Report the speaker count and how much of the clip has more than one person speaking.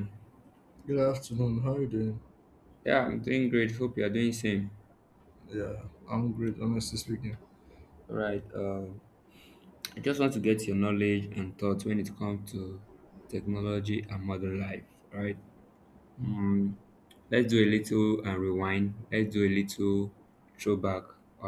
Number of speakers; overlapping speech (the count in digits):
2, no overlap